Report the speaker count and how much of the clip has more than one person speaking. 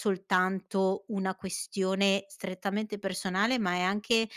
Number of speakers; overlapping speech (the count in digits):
1, no overlap